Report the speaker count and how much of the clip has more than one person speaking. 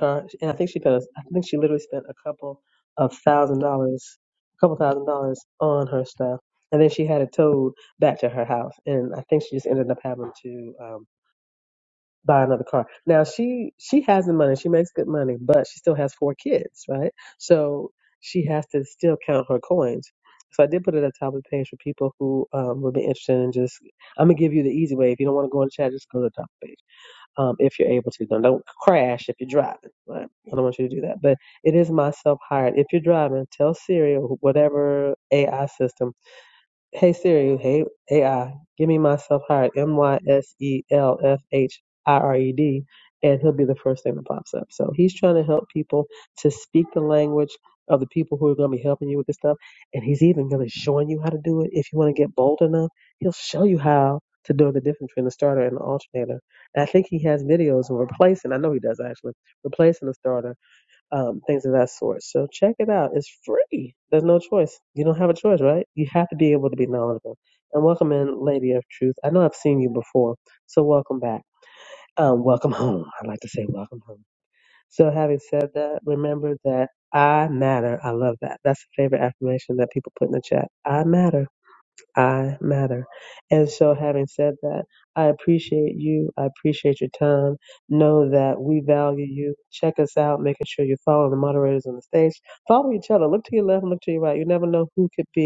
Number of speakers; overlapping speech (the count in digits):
1, no overlap